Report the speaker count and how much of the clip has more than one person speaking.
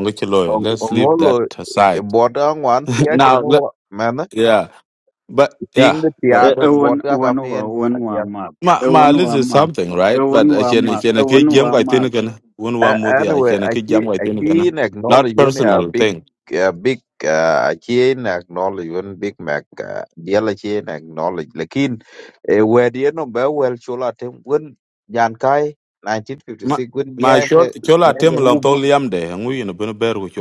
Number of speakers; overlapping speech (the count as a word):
three, about 32%